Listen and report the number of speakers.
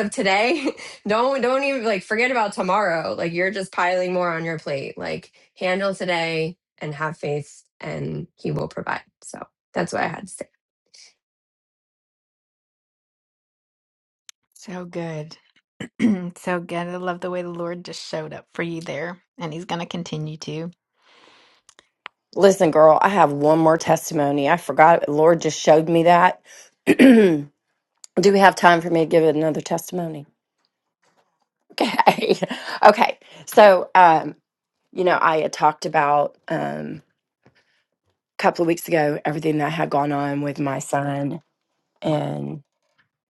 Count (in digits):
3